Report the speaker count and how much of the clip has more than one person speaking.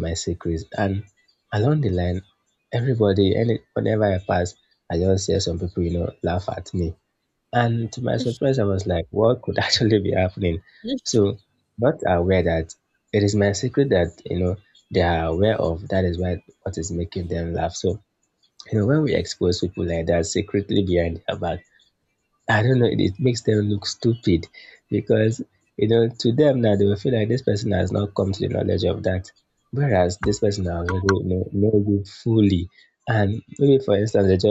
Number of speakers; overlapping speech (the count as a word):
one, no overlap